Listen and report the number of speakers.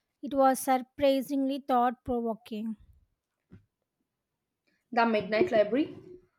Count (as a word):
two